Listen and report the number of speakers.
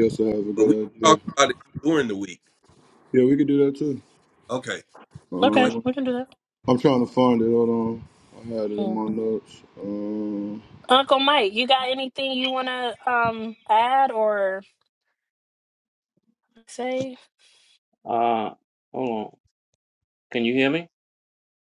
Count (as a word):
four